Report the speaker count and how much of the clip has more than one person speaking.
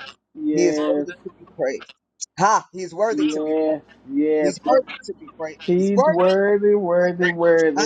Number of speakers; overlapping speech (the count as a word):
two, about 25%